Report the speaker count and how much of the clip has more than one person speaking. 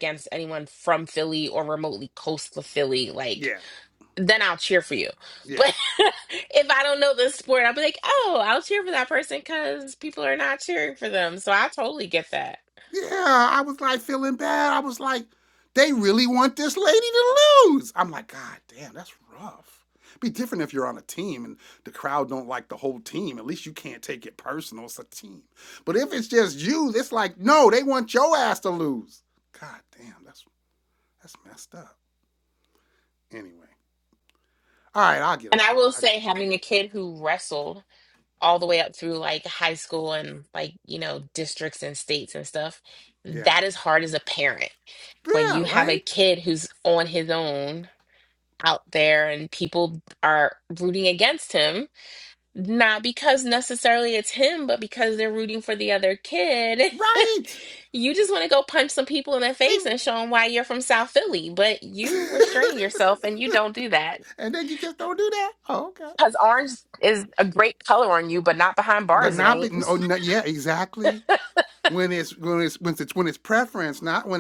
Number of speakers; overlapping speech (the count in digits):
2, about 3%